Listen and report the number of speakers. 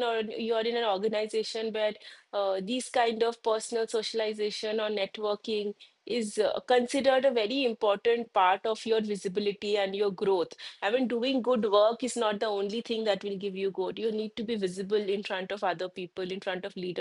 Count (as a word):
one